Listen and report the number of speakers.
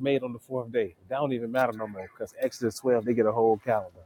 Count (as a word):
one